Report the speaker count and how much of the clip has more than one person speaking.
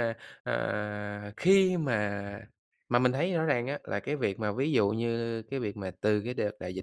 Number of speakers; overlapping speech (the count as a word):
one, no overlap